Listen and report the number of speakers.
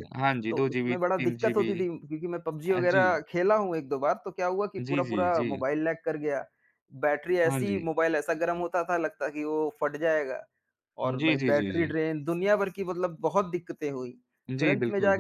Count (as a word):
two